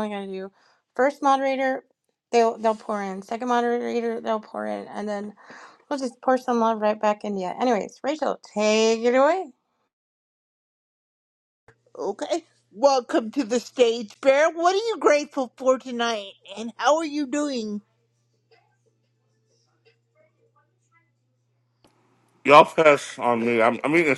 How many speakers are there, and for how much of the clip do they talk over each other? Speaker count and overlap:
three, no overlap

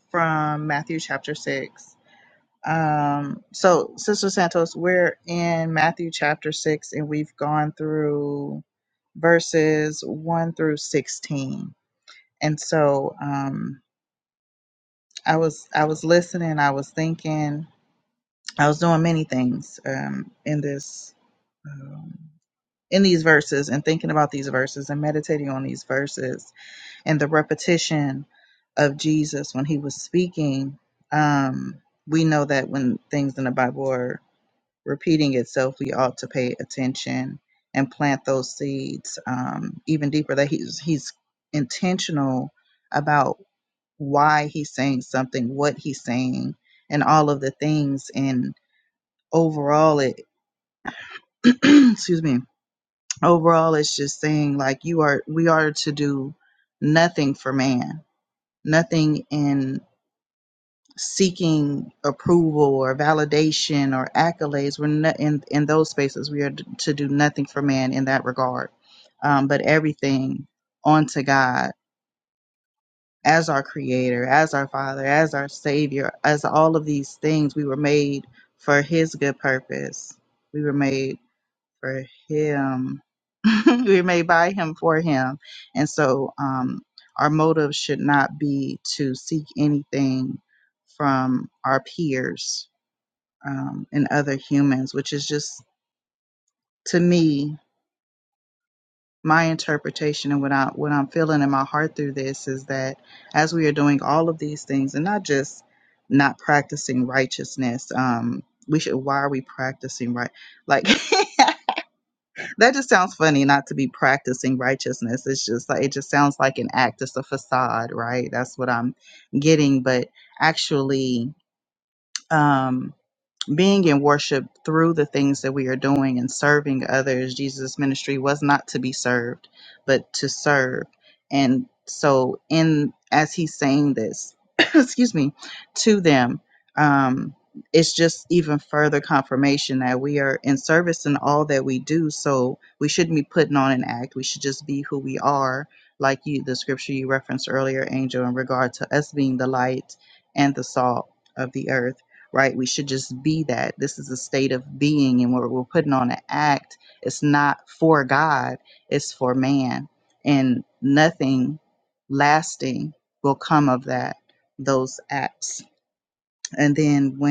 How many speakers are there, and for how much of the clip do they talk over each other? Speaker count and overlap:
one, no overlap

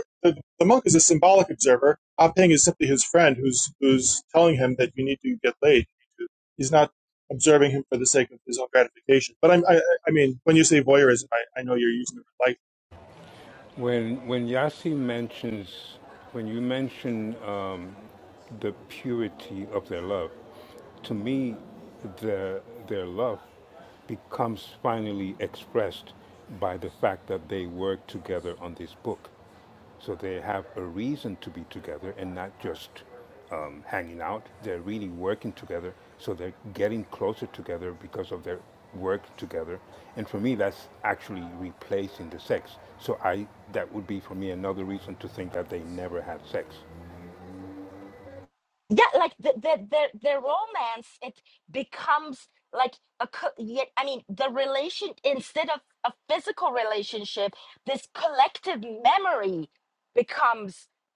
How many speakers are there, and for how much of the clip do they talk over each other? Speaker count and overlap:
three, no overlap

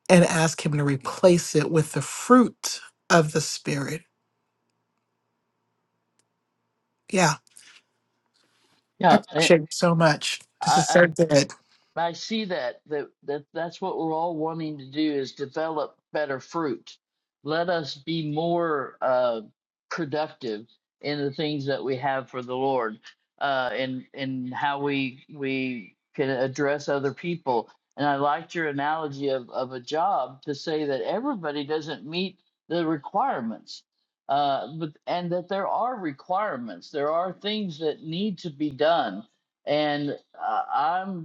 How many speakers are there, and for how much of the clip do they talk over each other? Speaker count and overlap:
two, about 2%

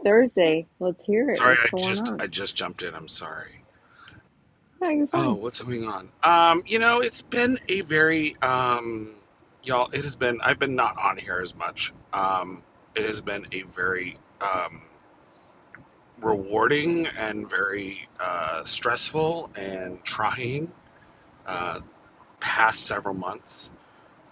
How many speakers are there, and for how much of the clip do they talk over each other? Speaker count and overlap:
two, about 5%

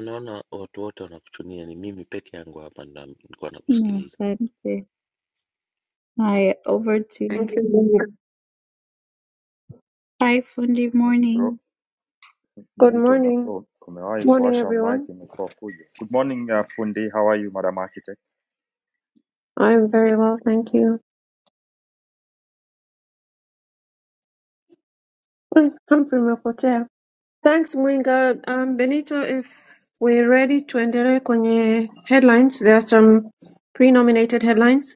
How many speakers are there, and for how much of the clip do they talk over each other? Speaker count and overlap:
four, about 7%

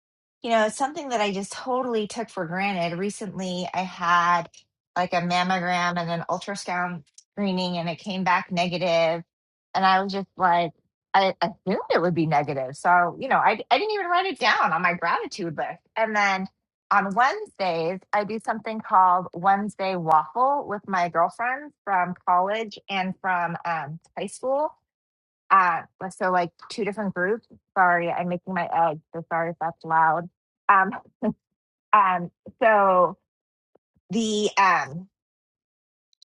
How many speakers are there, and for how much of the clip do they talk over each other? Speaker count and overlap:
one, no overlap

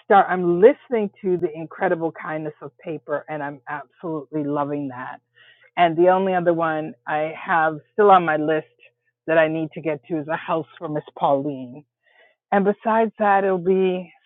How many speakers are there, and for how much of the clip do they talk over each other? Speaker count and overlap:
one, no overlap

